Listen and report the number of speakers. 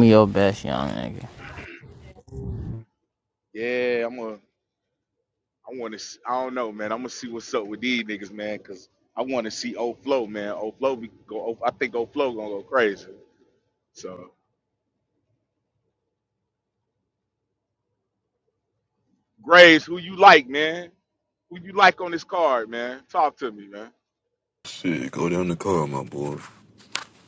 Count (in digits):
3